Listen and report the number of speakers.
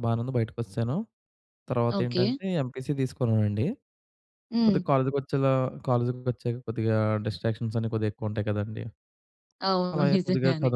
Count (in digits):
2